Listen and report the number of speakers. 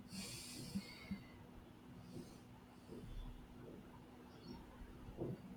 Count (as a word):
zero